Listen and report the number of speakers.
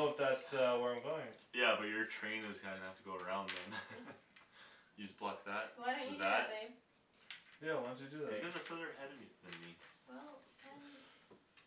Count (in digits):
3